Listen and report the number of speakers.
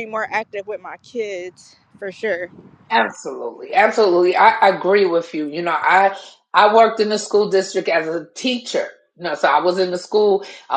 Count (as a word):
two